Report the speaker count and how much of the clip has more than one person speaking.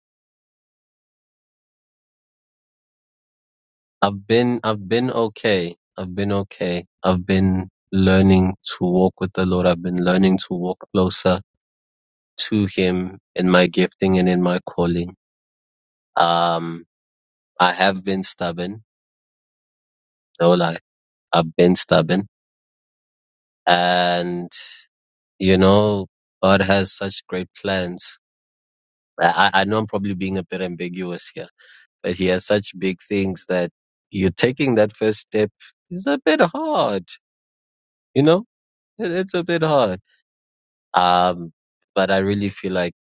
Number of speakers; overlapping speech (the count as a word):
one, no overlap